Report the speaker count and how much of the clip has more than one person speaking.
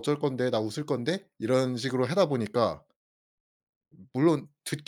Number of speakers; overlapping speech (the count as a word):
one, no overlap